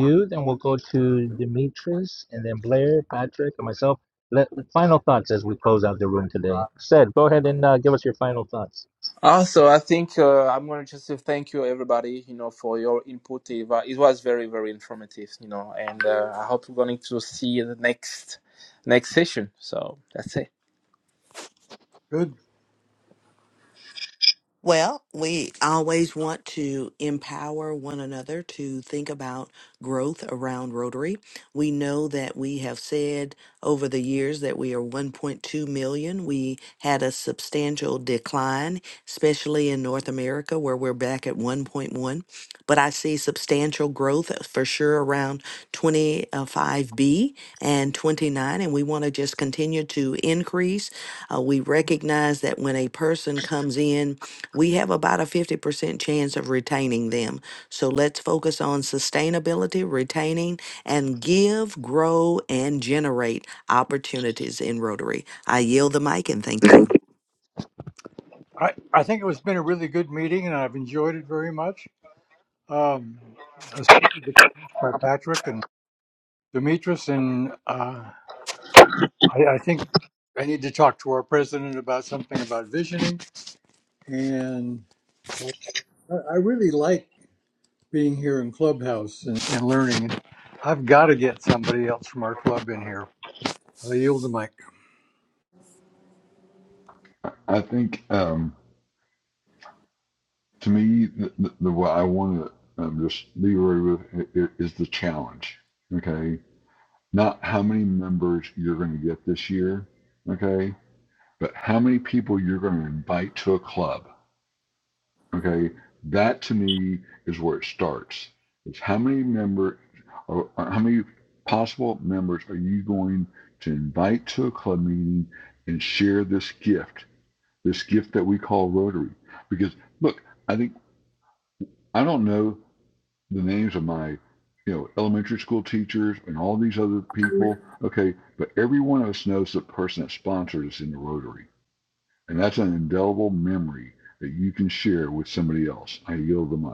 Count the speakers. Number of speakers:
5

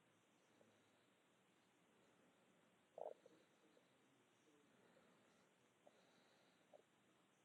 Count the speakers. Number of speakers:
0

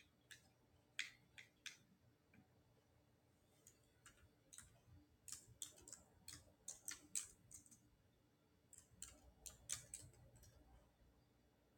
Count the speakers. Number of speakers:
0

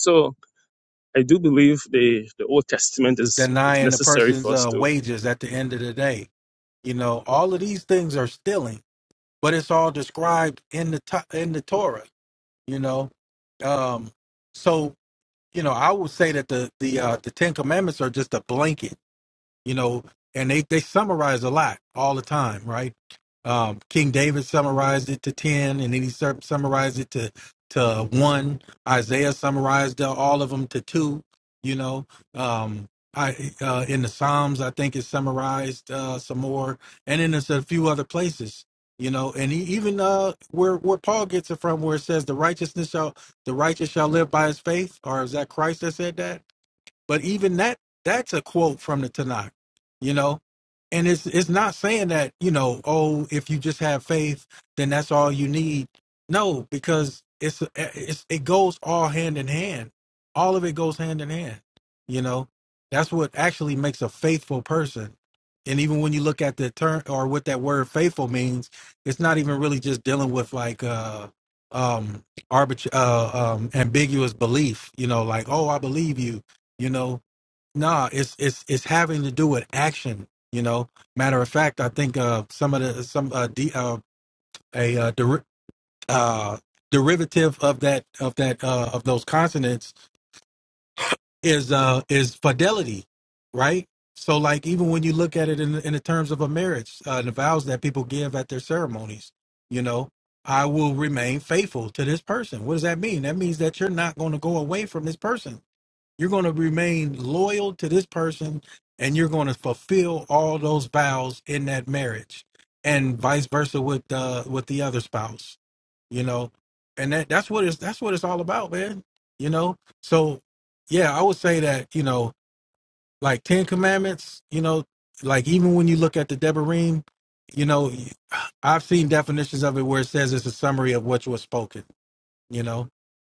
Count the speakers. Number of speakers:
2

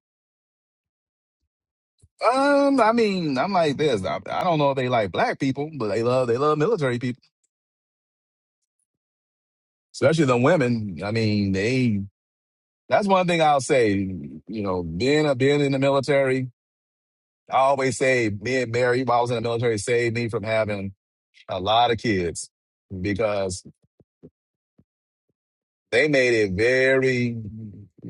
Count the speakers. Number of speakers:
1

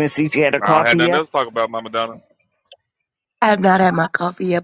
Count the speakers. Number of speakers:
3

